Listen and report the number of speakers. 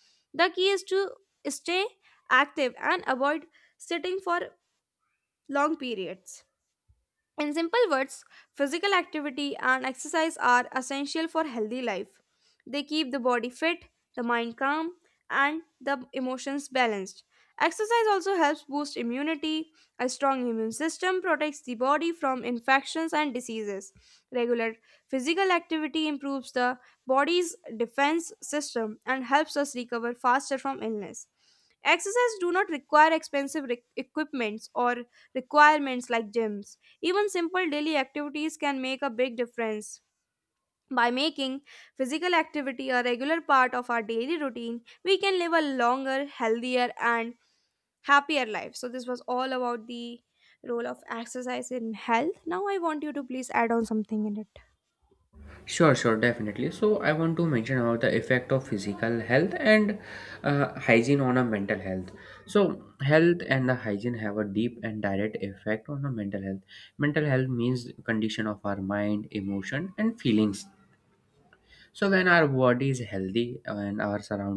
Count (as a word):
two